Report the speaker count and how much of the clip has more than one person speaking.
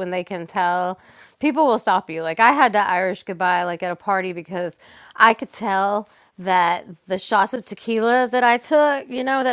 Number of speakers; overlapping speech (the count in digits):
1, no overlap